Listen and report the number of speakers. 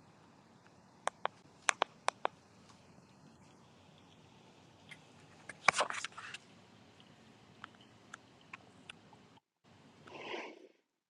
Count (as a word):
zero